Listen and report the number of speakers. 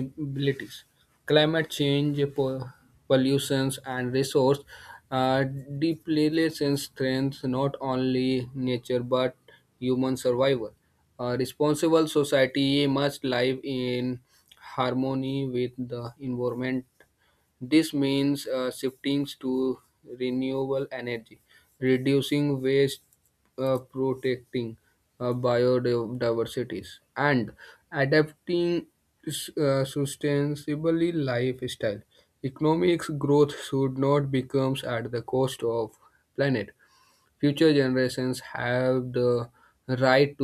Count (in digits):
1